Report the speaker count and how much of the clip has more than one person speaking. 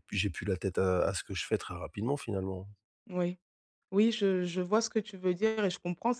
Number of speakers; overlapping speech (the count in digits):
2, no overlap